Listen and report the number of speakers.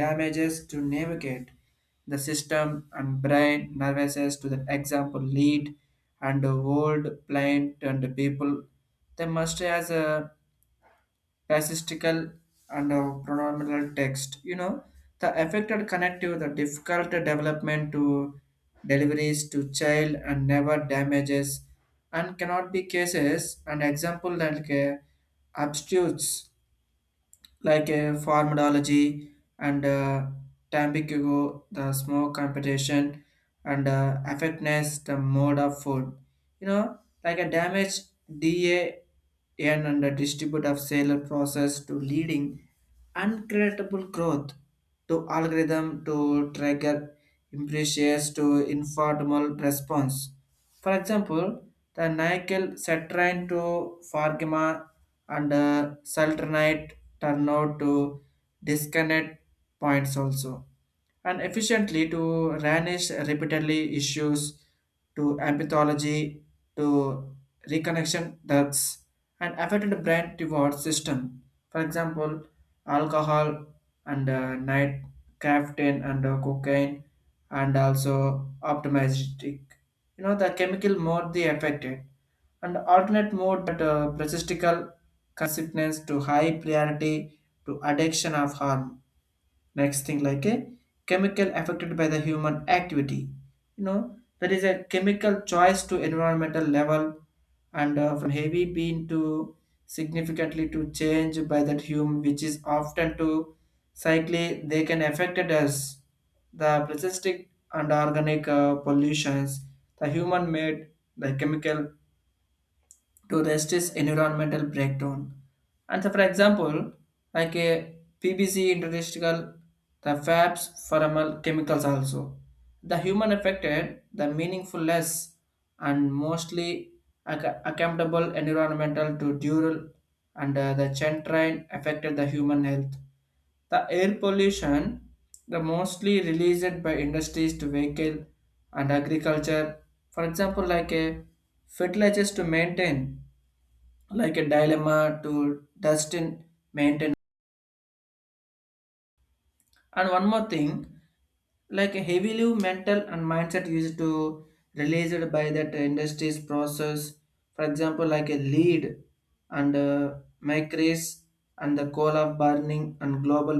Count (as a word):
one